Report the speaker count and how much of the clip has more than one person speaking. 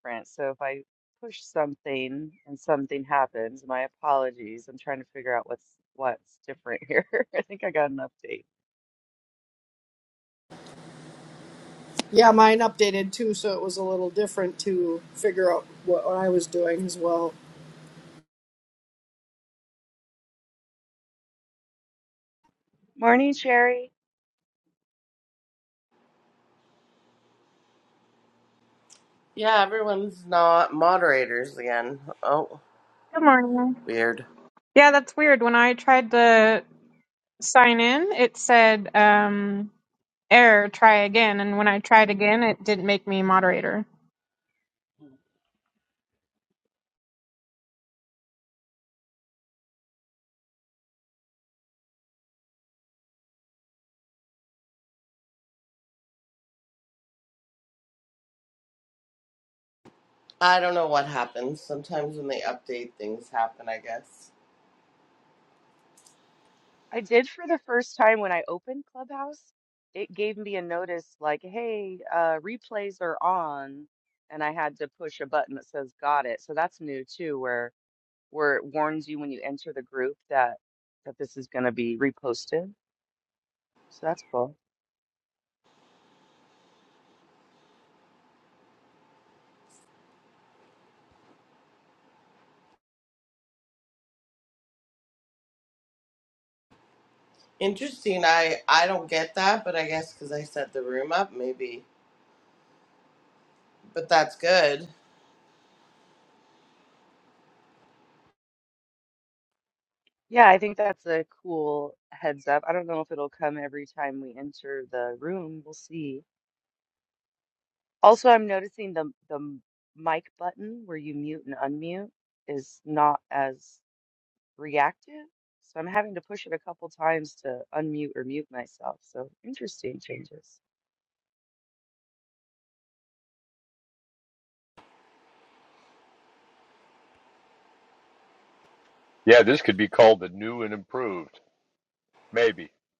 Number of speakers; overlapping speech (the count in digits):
5, no overlap